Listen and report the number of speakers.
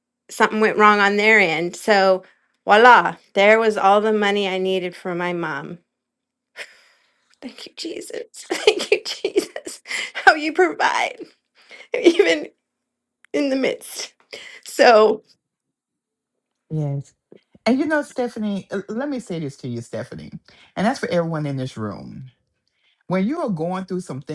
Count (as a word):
two